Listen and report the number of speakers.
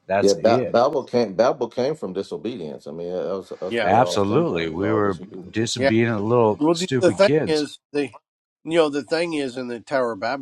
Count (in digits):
3